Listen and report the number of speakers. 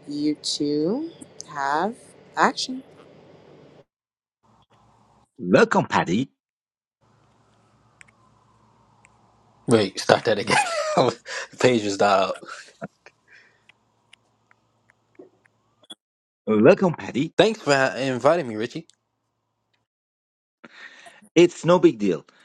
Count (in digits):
3